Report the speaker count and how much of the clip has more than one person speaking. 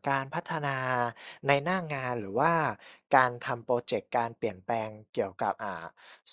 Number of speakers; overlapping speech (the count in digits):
1, no overlap